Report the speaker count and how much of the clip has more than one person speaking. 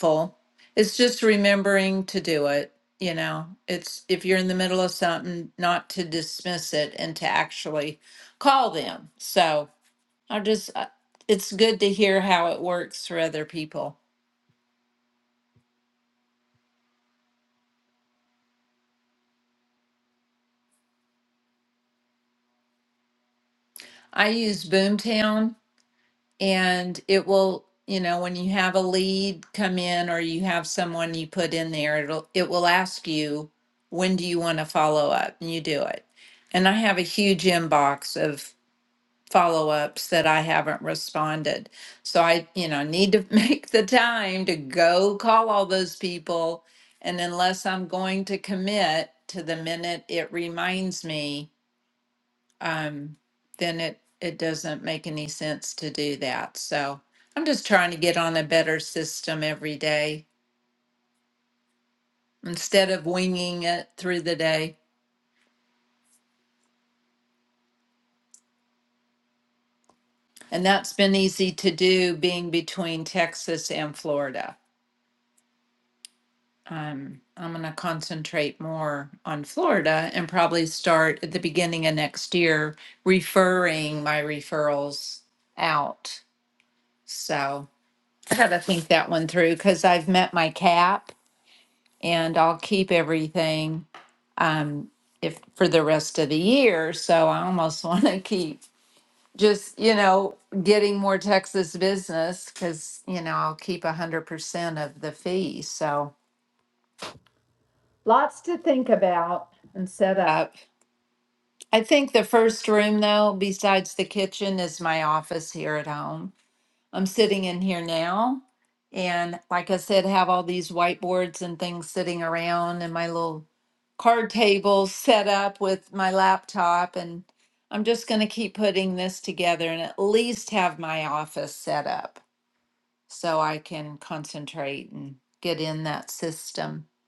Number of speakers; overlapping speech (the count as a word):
one, no overlap